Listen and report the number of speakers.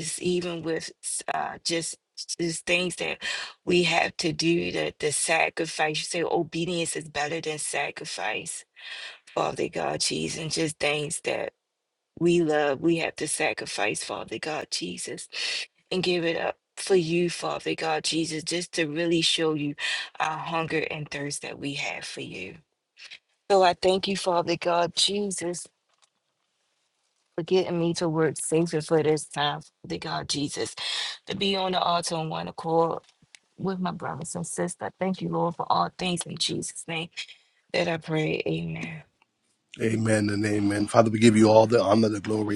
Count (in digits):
2